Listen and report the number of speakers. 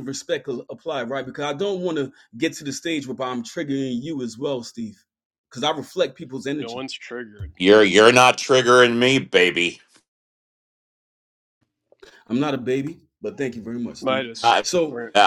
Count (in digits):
3